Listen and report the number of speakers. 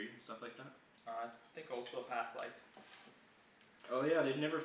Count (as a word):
two